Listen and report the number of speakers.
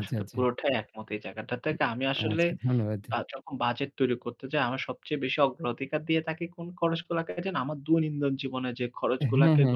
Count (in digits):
2